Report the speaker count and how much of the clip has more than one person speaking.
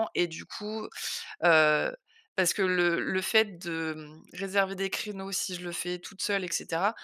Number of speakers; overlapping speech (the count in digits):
1, no overlap